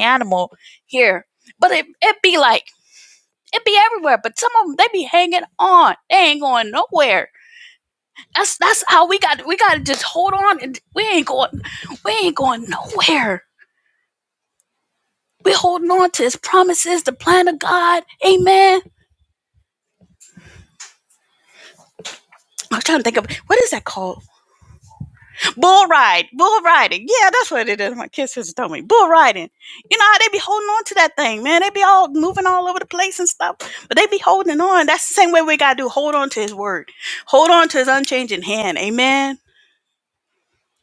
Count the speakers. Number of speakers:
1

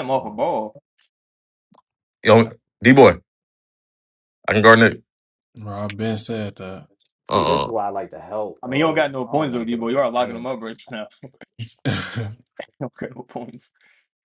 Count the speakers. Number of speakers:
4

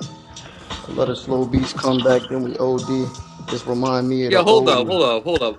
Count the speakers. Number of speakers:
2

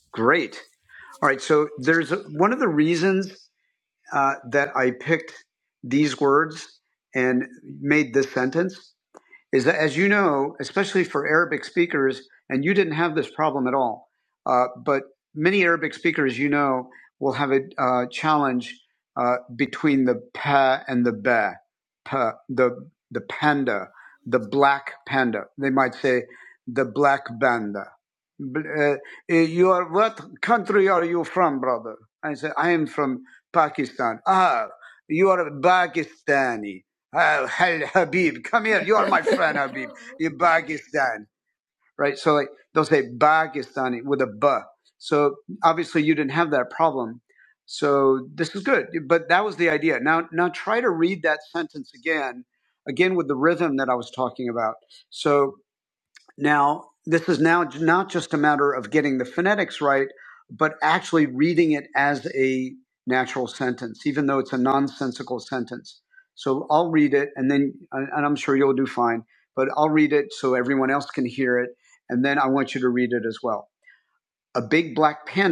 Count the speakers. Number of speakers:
1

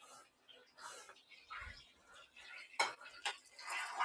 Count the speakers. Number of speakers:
0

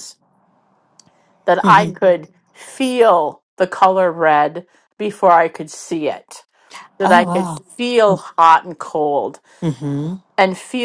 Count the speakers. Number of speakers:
2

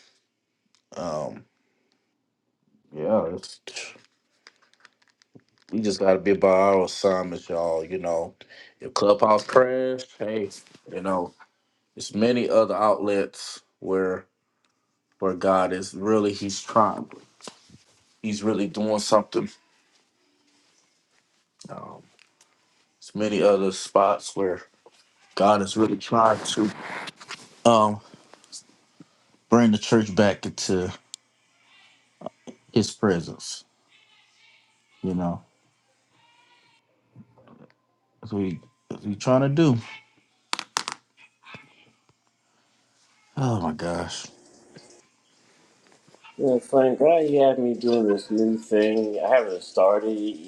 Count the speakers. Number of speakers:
2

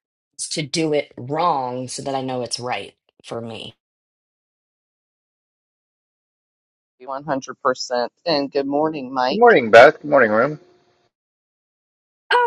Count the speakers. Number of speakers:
3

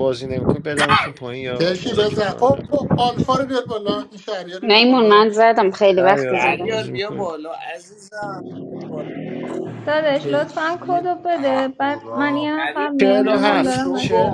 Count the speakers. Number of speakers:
5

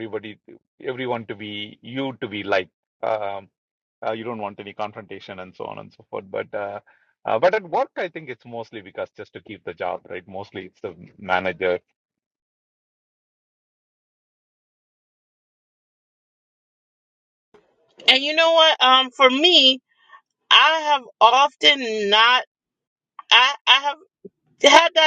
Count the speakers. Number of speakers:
2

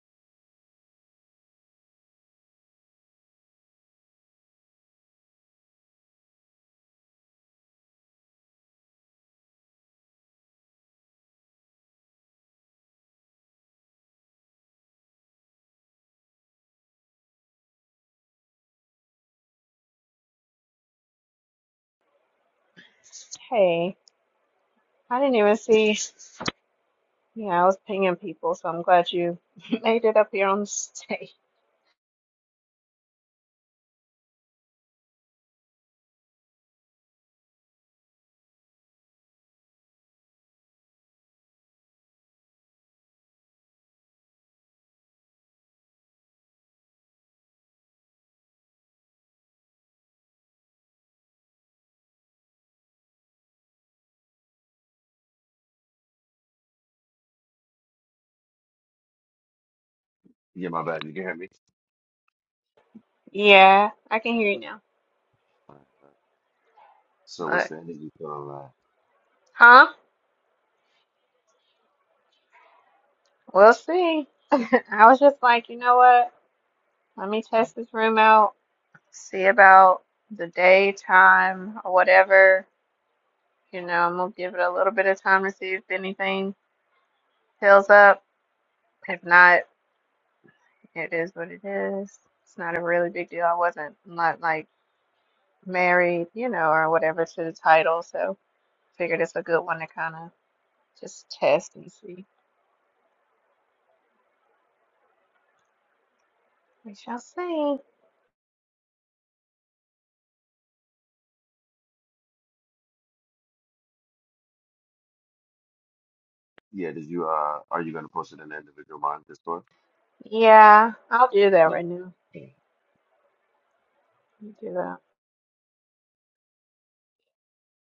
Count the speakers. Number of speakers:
2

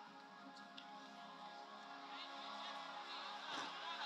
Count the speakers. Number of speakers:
0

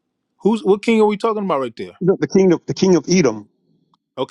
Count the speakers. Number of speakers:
2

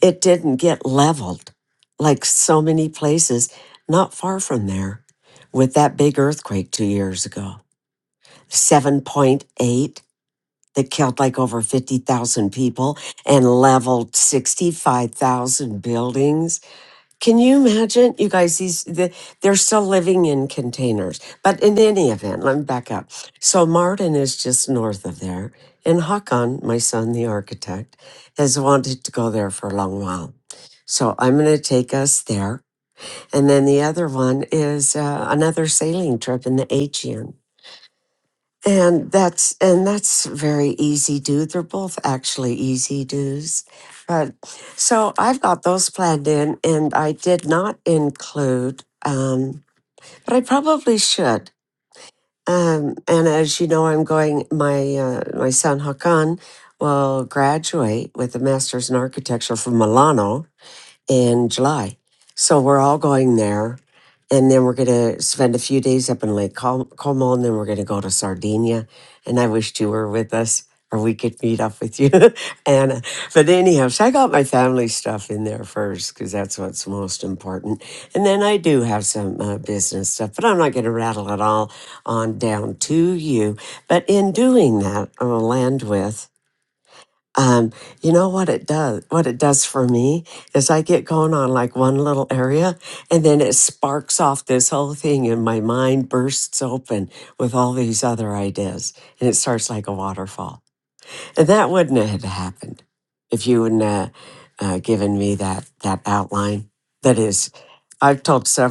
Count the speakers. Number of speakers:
1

